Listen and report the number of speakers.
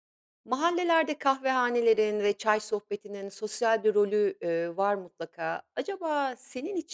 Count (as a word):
one